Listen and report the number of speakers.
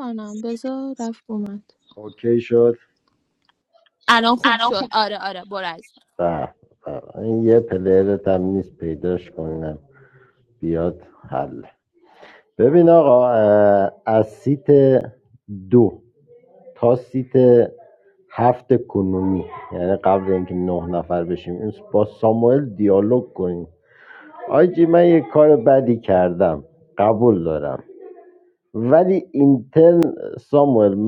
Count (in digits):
2